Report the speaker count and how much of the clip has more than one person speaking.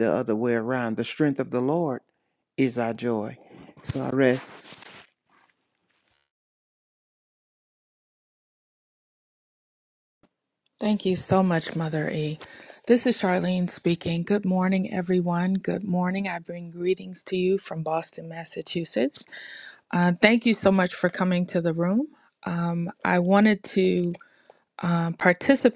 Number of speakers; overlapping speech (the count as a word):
two, no overlap